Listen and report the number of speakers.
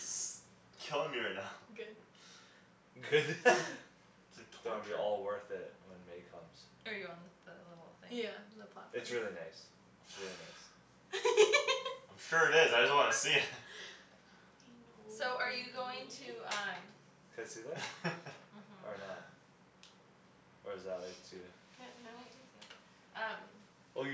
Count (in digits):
4